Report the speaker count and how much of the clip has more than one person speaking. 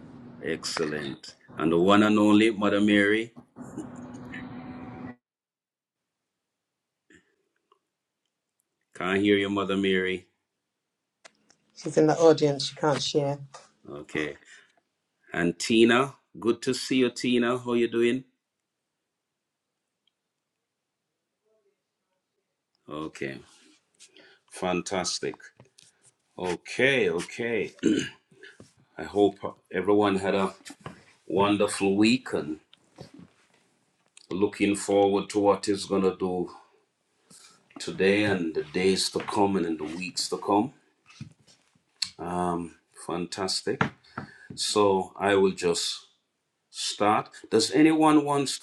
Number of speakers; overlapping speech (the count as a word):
two, no overlap